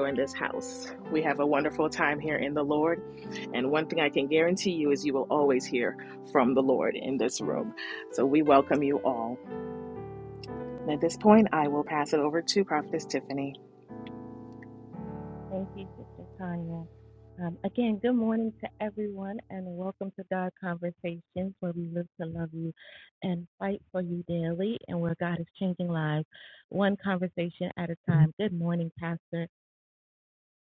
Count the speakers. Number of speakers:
two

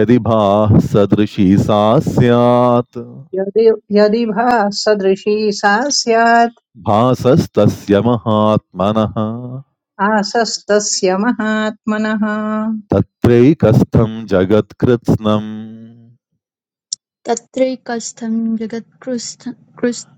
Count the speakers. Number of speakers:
three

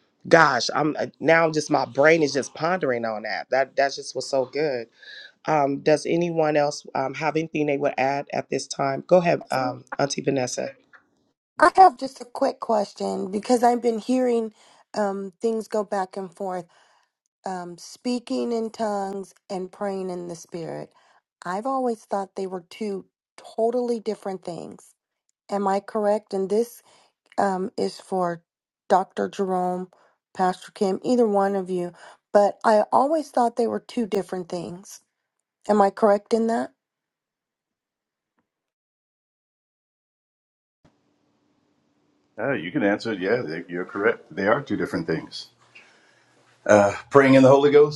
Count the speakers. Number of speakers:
three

